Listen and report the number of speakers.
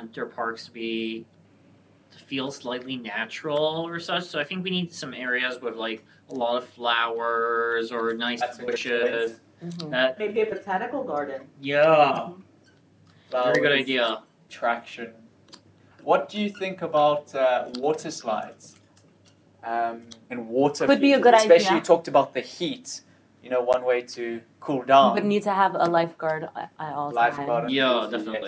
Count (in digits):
4